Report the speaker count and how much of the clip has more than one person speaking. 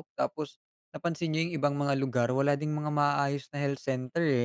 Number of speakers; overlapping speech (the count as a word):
one, no overlap